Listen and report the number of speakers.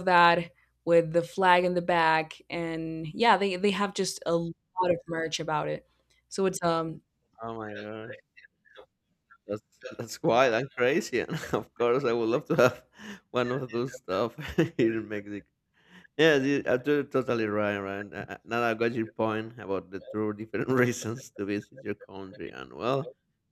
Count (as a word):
two